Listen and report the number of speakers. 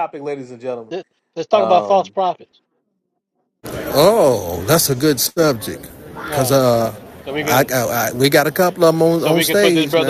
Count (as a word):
three